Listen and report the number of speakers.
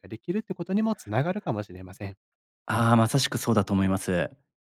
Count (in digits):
2